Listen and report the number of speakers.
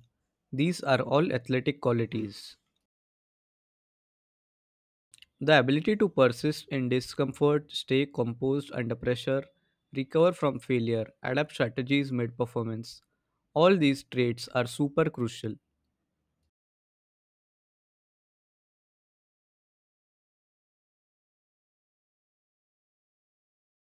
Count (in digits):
1